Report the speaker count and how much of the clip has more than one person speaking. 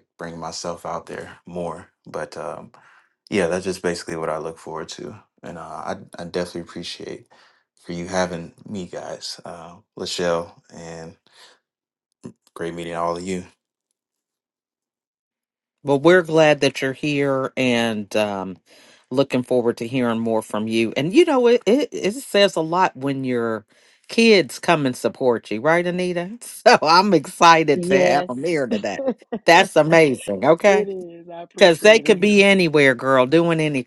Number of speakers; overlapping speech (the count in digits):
3, about 4%